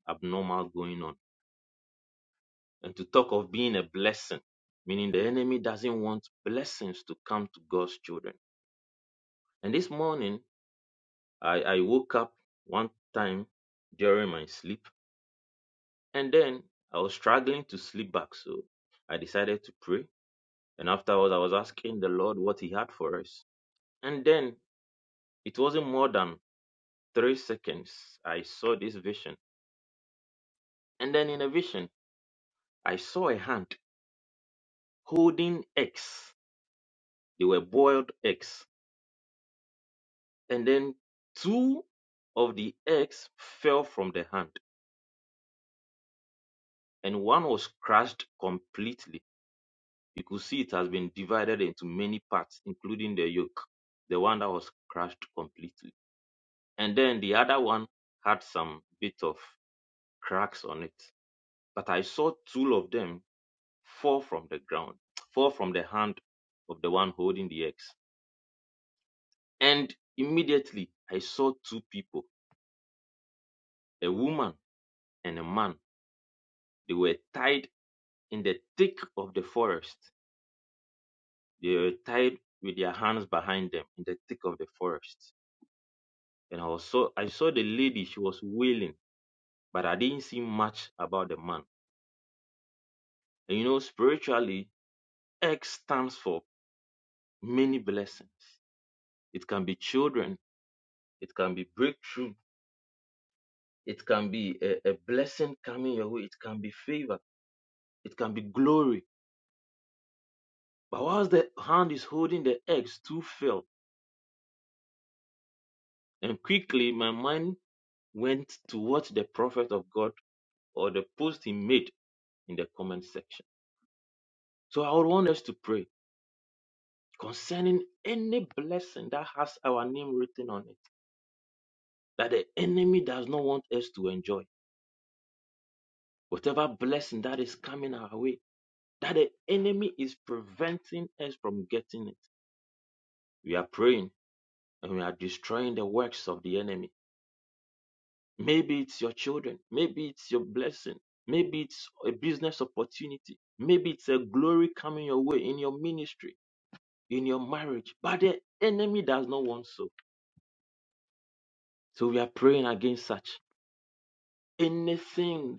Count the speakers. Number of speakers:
1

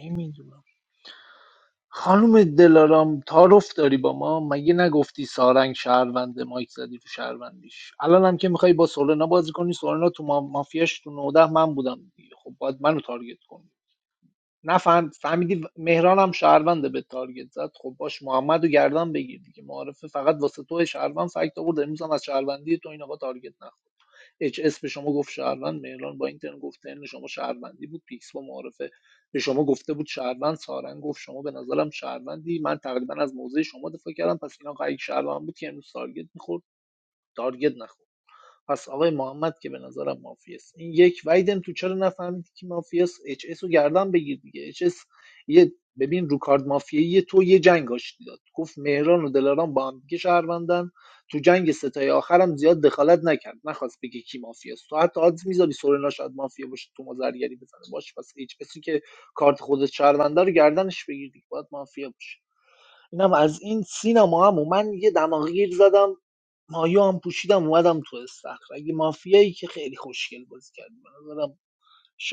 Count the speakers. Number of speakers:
1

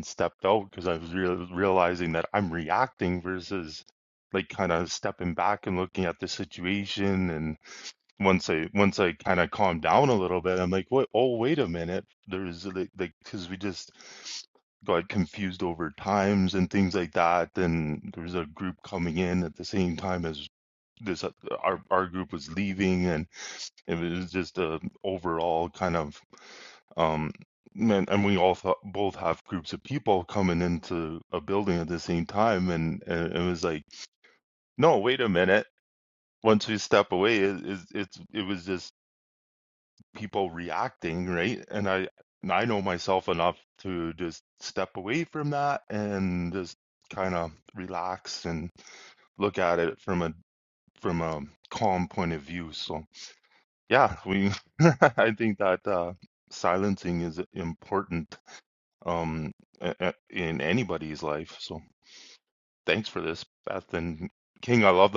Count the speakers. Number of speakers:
1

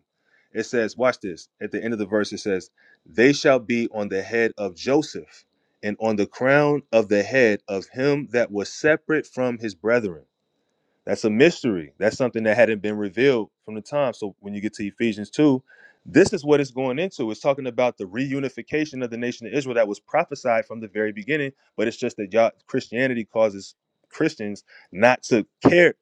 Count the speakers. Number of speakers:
1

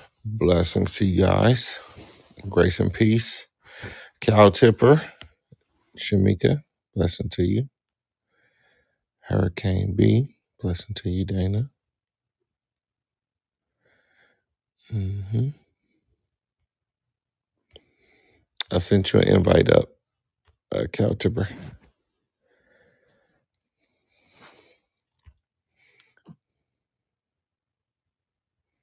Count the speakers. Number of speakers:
1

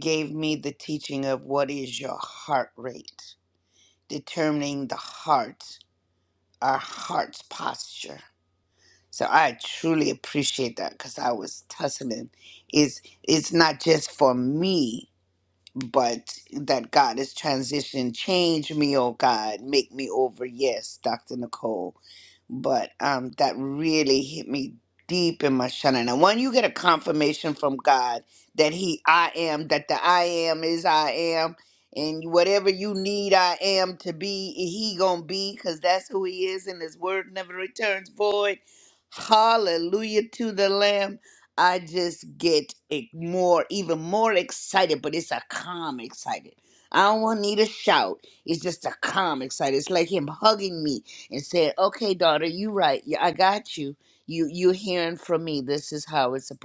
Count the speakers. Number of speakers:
1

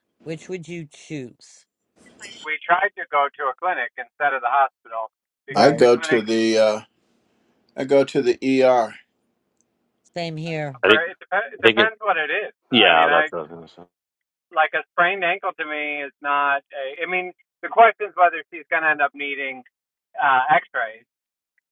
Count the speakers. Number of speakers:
4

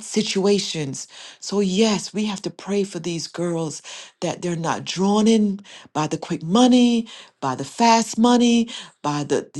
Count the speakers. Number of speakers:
1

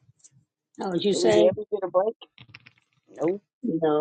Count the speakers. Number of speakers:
2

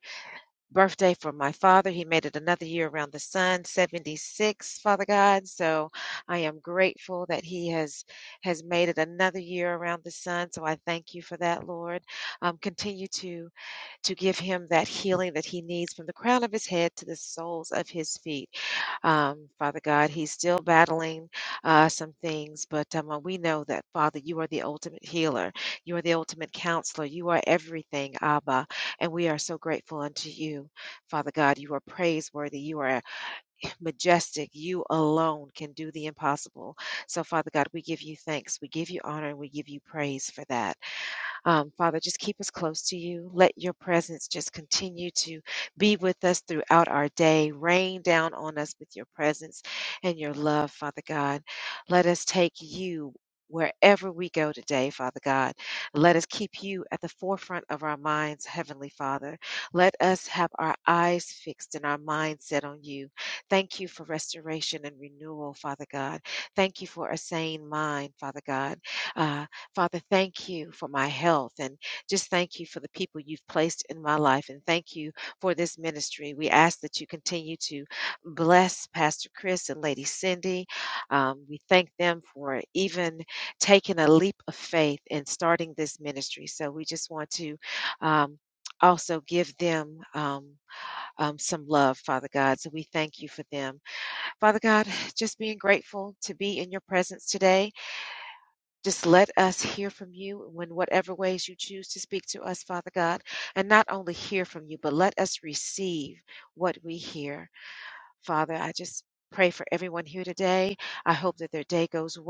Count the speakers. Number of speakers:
1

